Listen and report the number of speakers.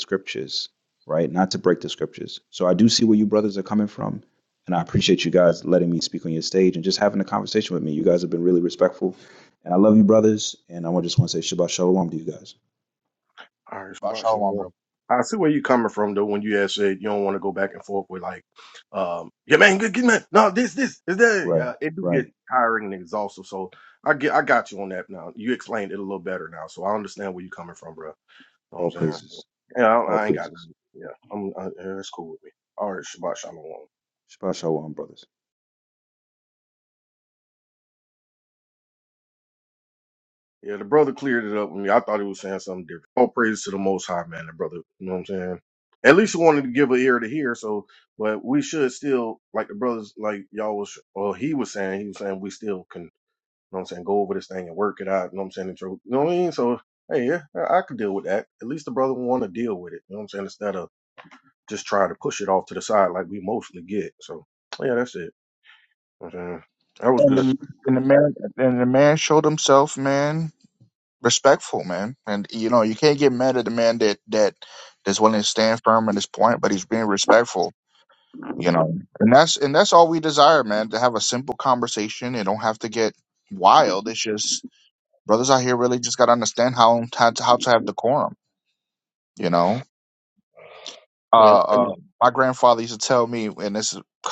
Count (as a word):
three